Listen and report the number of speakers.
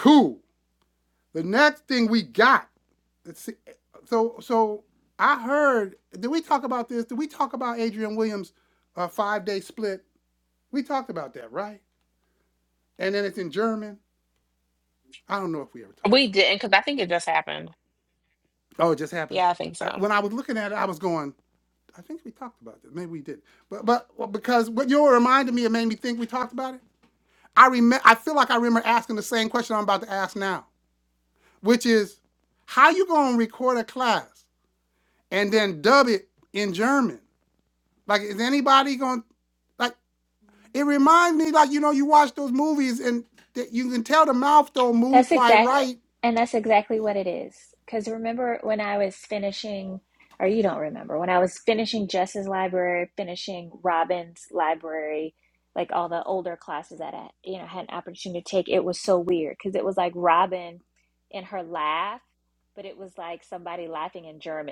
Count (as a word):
three